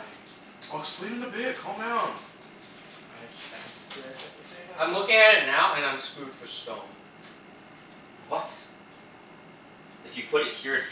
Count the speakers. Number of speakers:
four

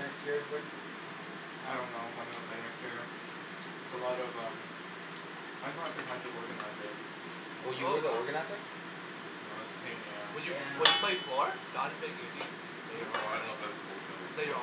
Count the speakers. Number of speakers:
four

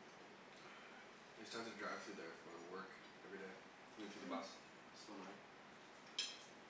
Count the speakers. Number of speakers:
one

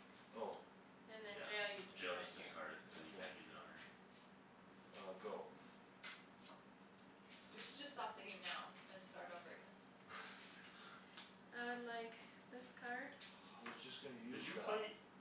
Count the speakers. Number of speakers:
four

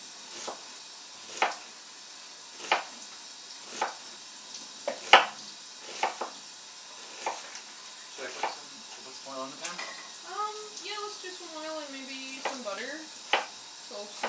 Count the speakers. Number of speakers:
two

